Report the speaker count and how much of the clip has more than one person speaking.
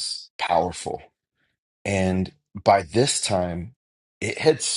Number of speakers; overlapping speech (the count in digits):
1, no overlap